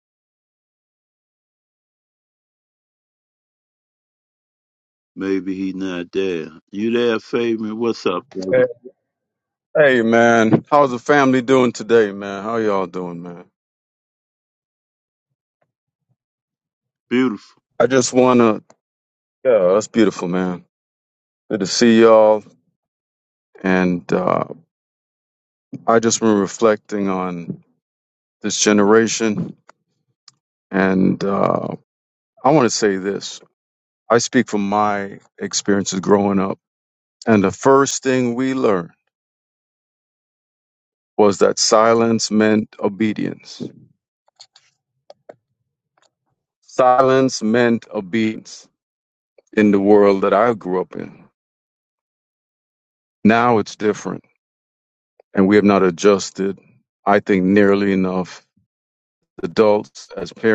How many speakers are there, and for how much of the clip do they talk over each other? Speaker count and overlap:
2, under 1%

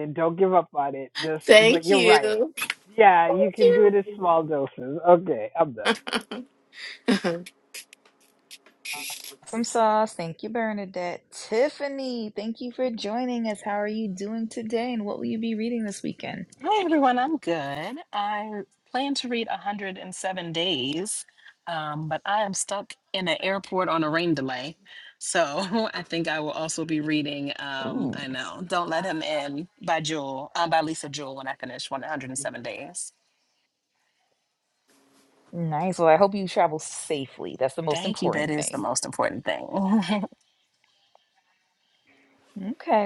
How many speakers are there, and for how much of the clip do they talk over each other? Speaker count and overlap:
4, about 7%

